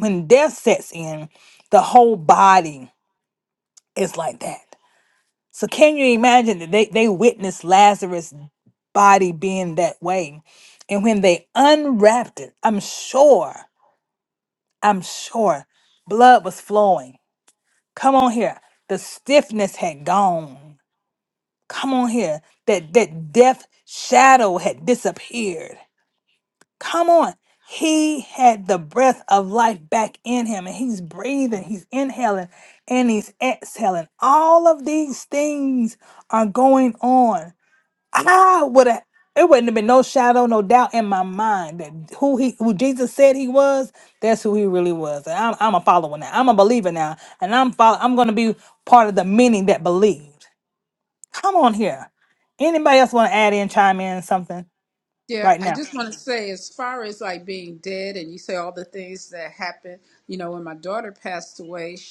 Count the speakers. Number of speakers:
two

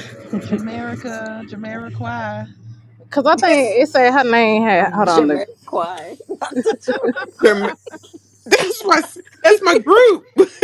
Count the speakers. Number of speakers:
four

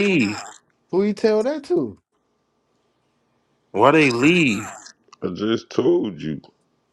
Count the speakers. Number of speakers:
three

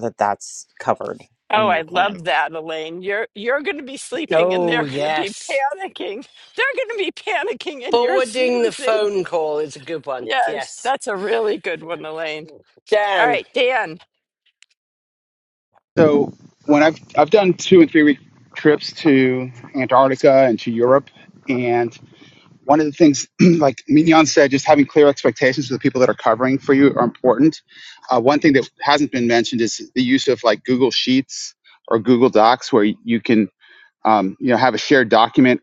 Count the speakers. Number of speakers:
four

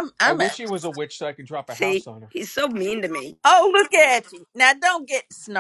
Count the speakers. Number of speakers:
three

